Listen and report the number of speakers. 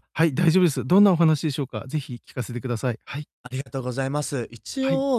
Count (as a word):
two